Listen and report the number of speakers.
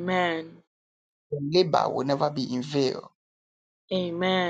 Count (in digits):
2